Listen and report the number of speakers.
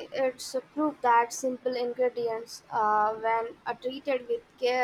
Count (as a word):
one